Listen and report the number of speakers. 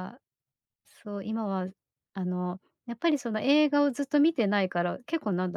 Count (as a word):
one